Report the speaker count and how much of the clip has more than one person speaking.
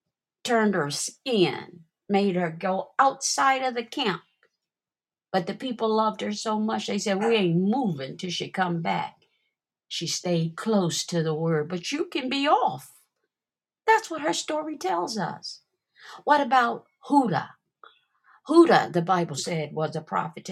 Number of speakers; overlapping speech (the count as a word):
one, no overlap